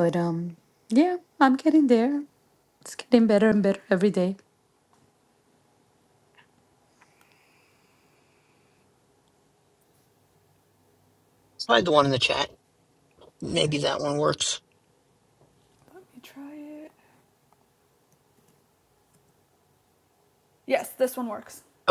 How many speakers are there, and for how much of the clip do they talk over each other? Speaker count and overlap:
3, about 1%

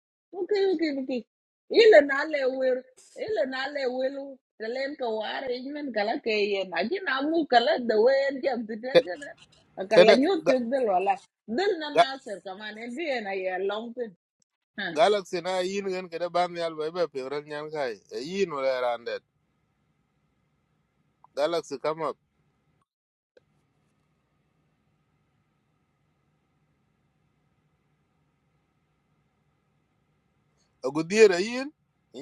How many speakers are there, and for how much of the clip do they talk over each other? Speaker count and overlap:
2, about 2%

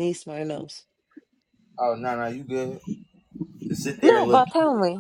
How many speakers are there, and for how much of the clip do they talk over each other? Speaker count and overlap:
2, about 9%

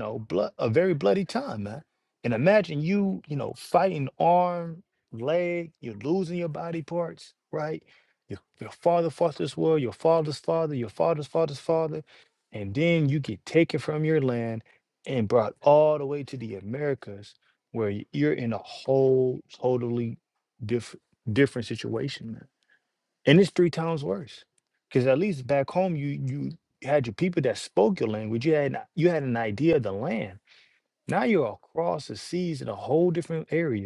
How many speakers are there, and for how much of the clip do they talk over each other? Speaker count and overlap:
1, no overlap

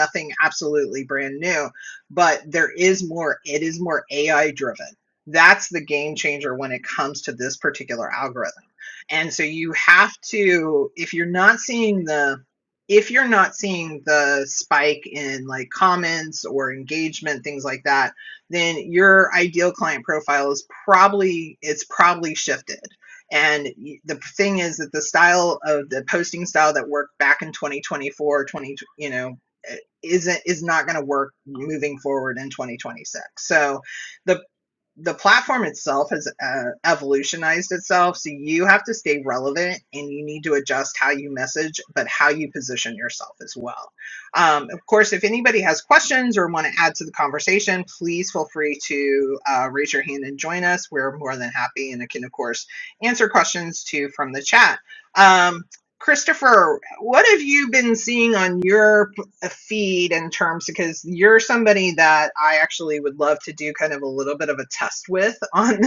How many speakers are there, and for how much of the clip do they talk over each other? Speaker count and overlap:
1, no overlap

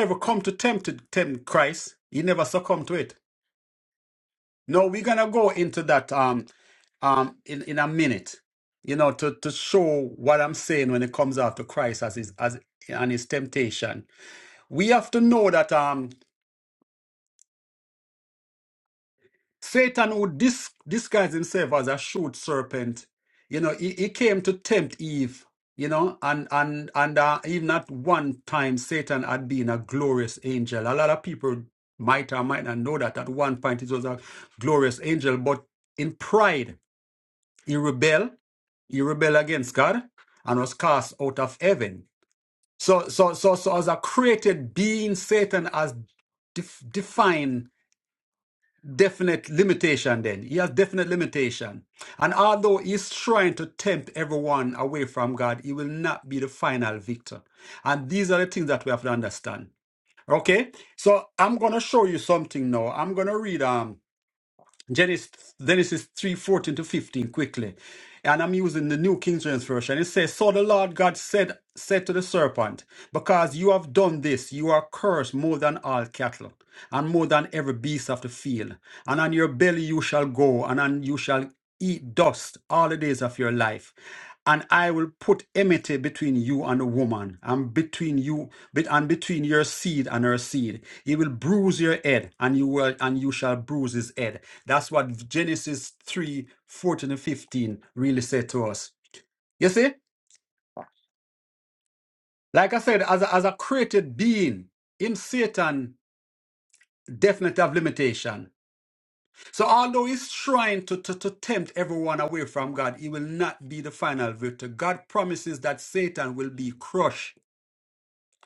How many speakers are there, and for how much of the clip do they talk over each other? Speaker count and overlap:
1, no overlap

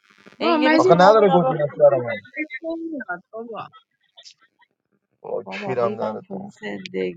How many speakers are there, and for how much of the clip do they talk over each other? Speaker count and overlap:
3, about 27%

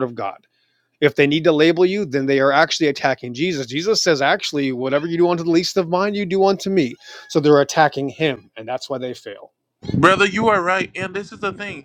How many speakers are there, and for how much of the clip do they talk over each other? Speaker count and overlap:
2, no overlap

